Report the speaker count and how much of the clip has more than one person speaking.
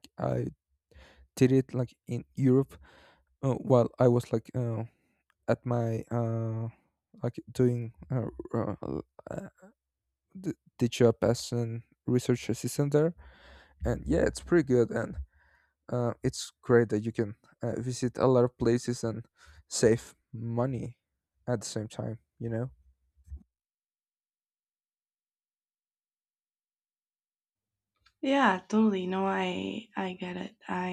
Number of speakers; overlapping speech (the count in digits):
2, no overlap